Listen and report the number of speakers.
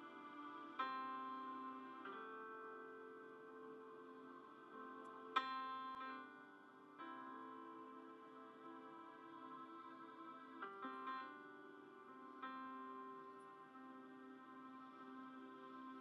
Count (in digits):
0